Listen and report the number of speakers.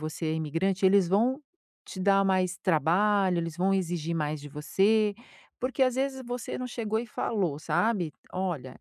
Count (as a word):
one